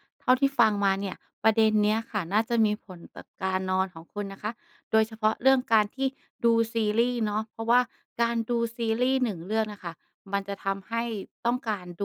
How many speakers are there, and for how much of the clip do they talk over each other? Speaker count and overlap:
one, no overlap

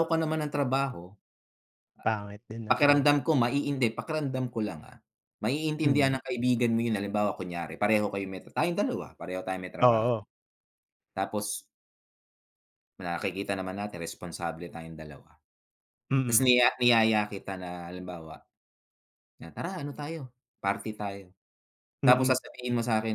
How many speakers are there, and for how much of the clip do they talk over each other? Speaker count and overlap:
two, about 4%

